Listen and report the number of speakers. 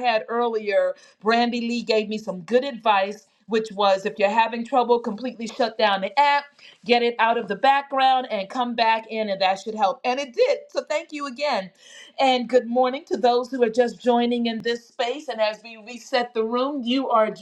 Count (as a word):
one